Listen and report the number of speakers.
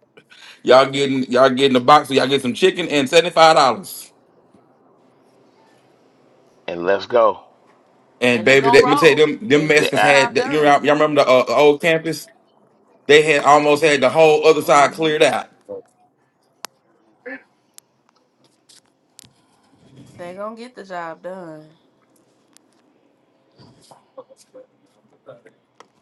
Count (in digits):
3